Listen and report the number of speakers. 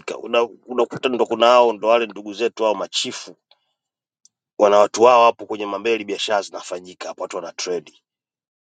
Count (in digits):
1